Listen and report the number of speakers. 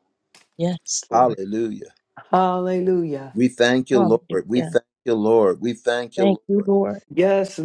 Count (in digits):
3